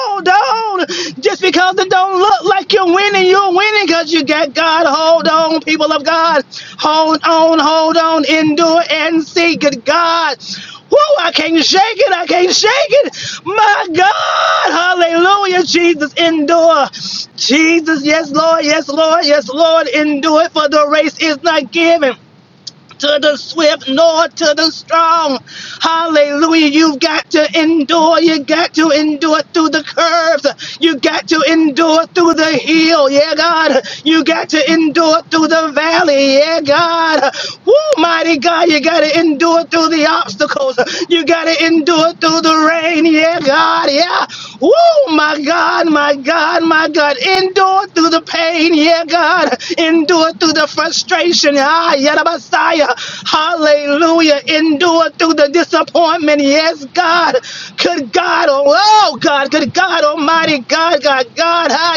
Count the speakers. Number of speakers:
one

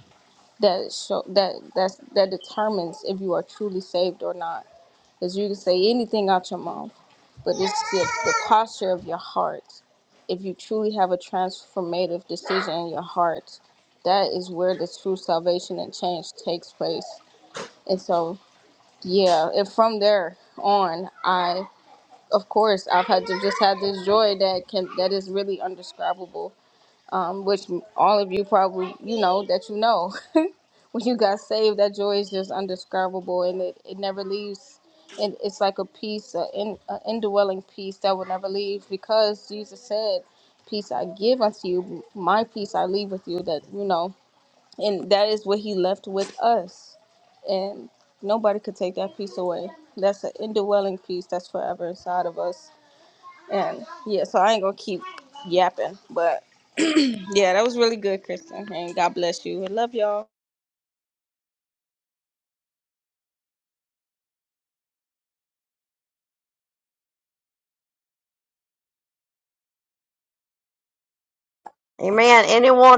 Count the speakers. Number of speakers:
two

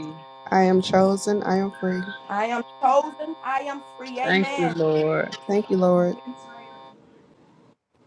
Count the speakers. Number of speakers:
three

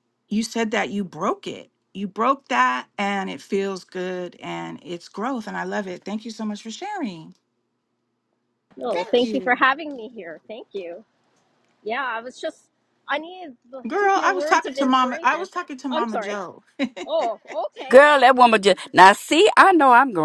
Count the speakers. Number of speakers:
three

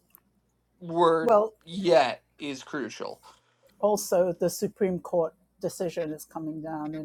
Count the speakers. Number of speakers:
two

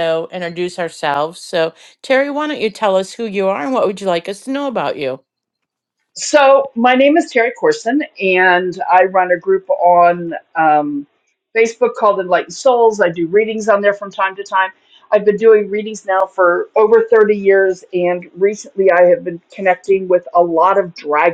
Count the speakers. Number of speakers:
two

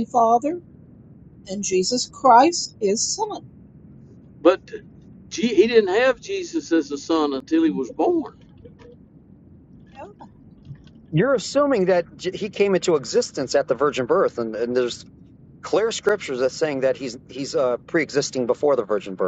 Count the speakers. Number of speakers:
three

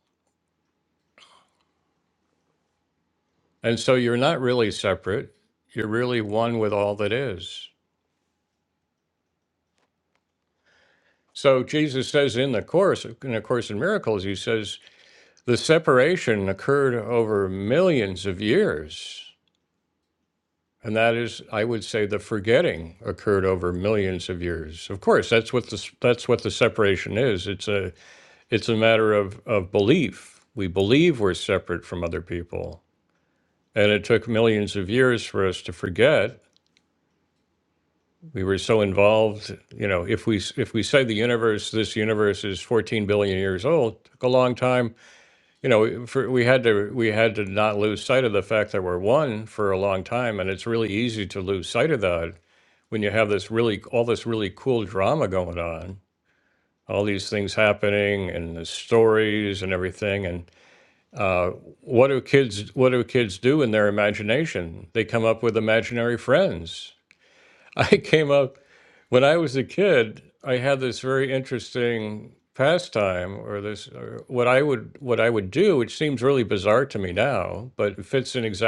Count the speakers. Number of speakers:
one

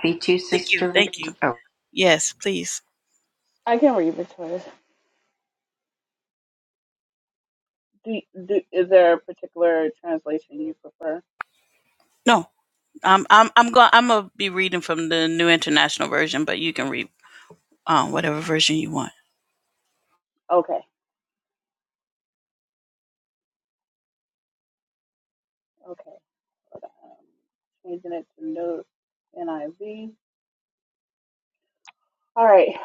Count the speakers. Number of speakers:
three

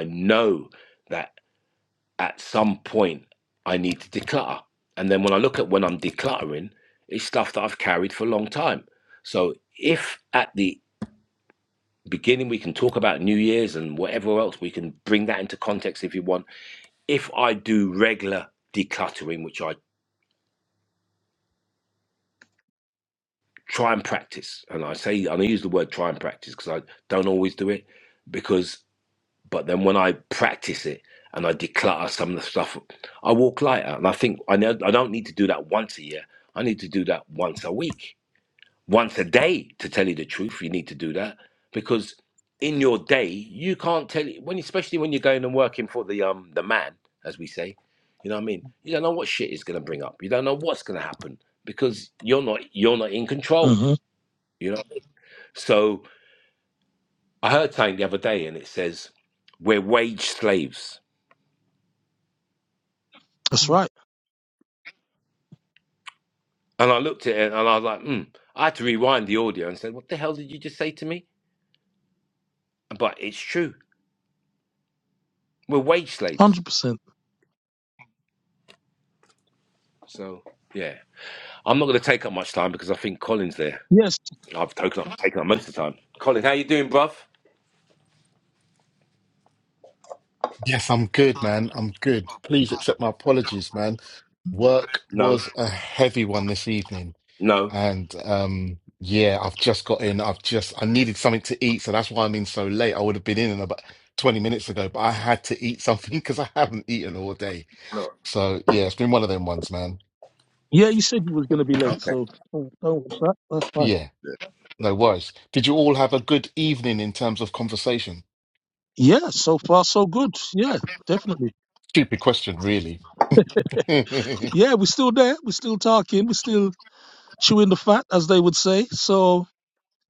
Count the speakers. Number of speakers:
three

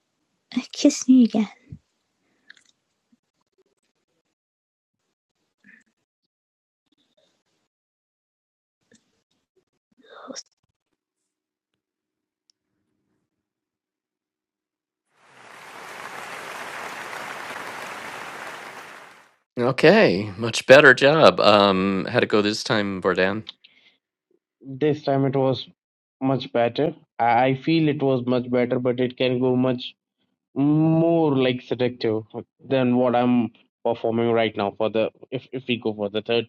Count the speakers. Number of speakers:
three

